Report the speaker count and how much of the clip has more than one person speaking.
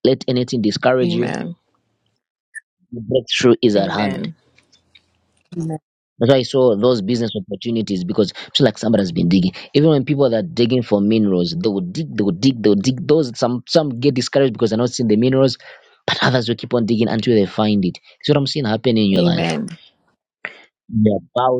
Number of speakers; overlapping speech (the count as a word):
two, about 6%